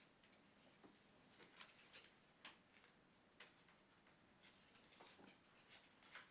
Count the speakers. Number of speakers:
zero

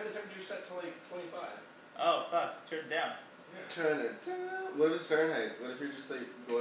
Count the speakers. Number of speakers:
three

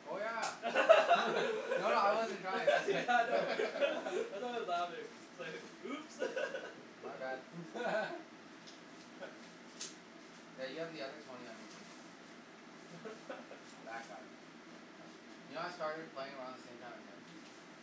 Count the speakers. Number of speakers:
two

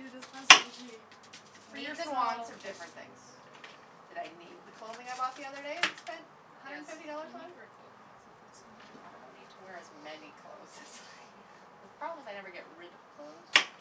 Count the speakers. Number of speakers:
two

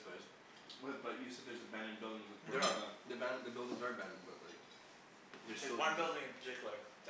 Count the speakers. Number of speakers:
three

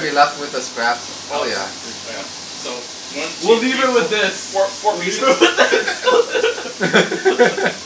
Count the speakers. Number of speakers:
three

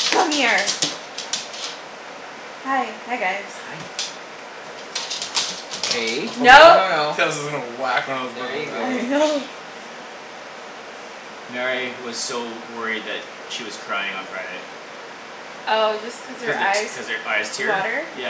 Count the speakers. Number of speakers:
three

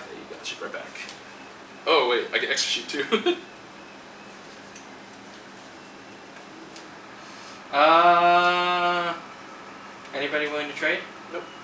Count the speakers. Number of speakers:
two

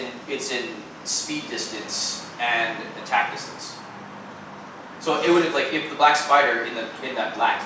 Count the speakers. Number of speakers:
one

